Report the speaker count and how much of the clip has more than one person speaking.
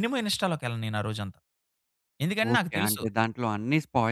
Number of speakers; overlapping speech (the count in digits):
2, about 14%